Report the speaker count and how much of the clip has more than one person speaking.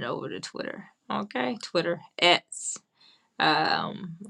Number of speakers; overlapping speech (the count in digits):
1, no overlap